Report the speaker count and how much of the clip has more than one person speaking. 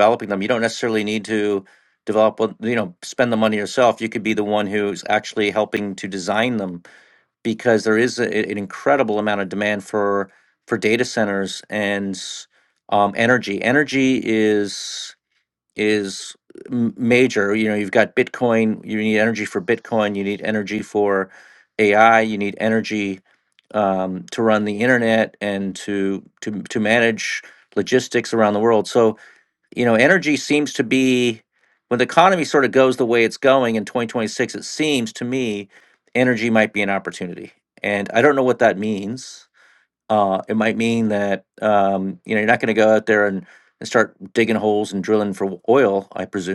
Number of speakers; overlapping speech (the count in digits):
1, no overlap